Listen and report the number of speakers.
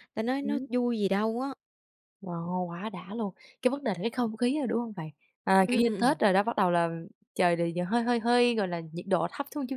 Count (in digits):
2